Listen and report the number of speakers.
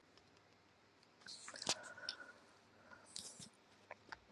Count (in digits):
0